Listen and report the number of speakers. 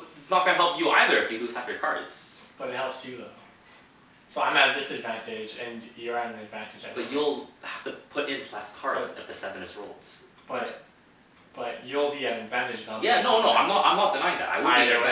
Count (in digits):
2